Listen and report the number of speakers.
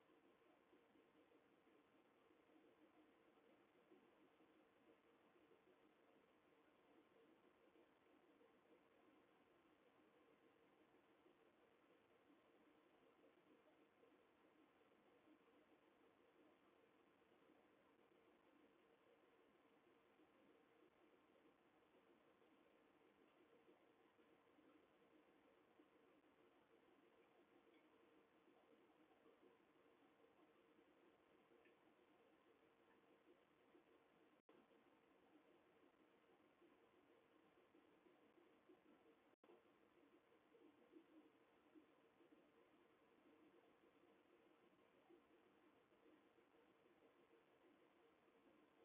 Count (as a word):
zero